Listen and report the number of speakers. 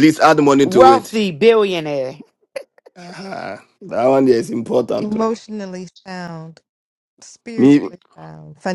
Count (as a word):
three